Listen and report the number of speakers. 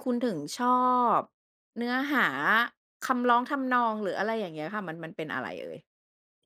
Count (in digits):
1